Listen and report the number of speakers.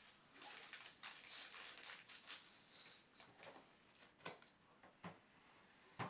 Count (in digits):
0